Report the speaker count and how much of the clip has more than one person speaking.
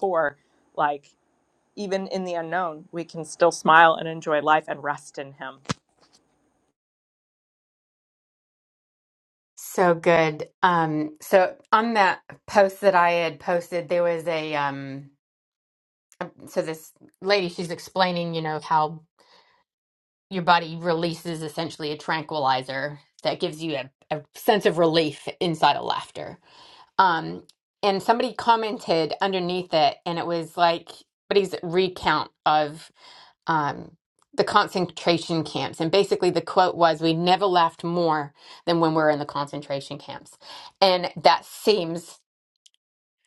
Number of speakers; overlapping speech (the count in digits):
2, no overlap